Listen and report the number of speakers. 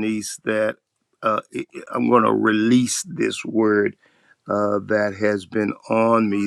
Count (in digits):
1